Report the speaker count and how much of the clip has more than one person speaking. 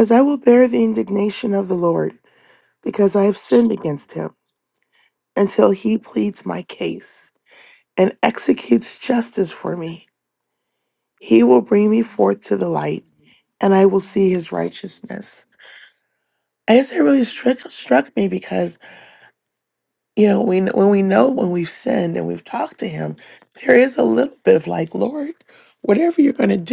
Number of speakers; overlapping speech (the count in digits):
1, no overlap